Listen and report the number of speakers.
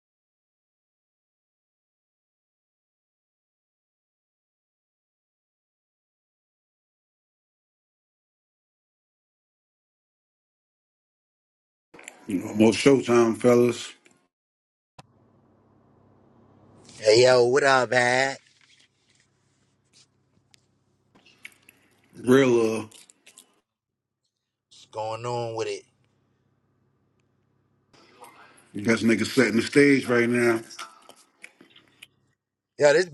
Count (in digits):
2